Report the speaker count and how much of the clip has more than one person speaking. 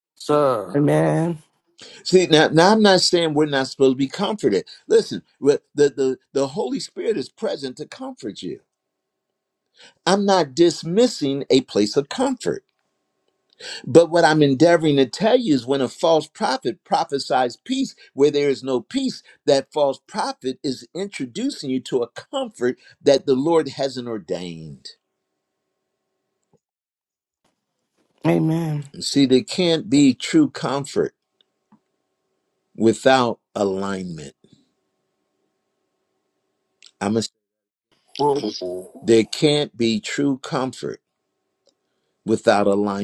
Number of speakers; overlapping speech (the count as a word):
three, no overlap